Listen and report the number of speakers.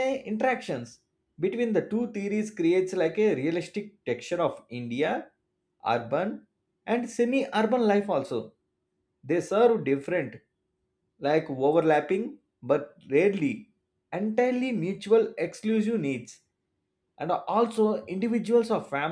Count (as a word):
one